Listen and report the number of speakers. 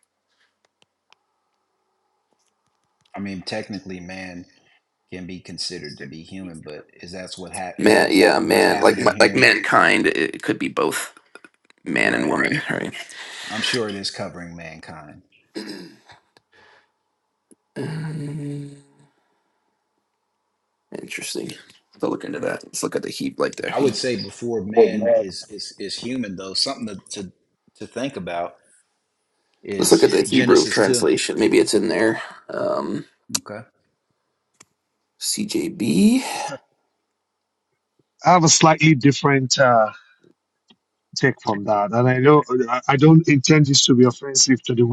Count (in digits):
3